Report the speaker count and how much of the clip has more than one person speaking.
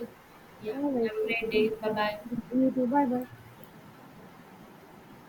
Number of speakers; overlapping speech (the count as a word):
two, about 12%